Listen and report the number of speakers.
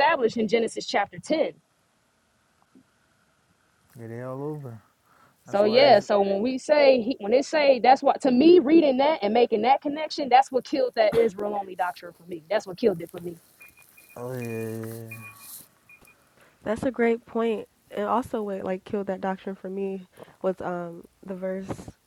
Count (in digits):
3